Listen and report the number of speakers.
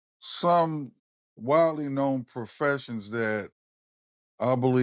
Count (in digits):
1